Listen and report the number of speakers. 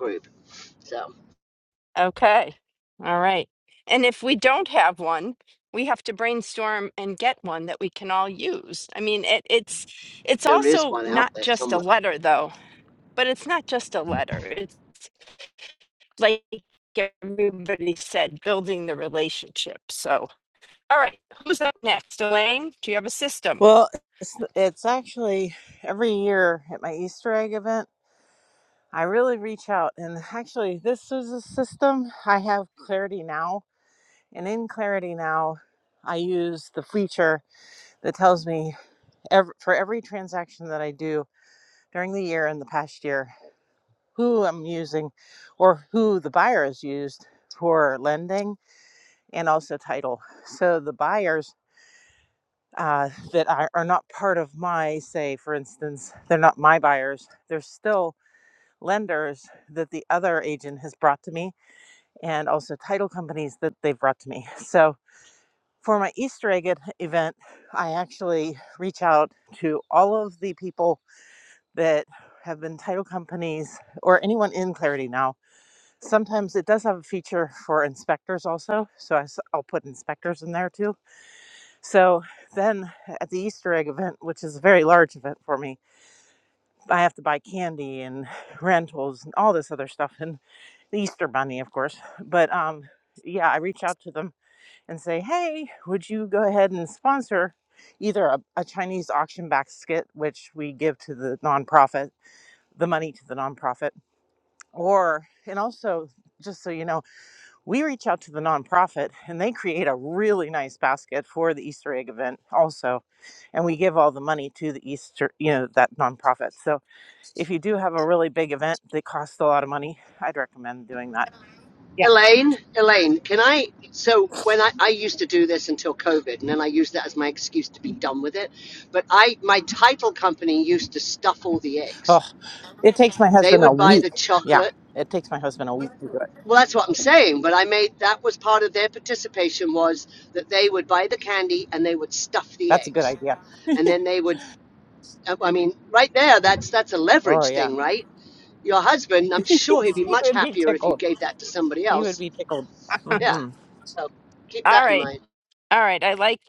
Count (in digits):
3